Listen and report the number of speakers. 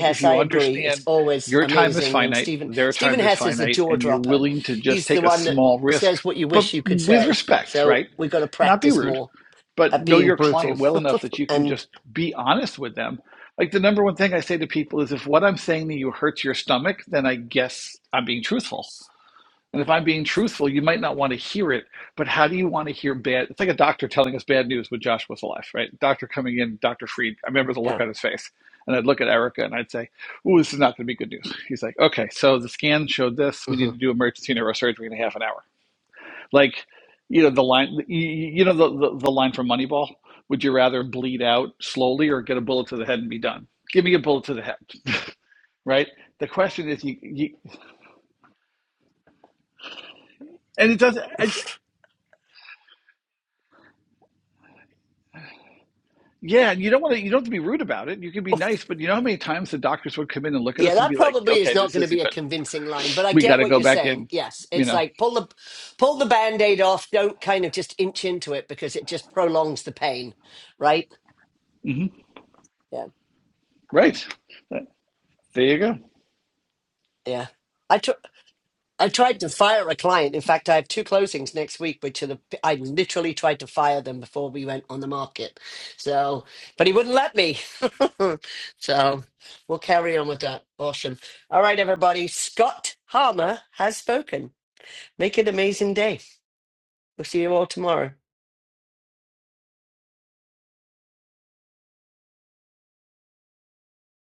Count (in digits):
2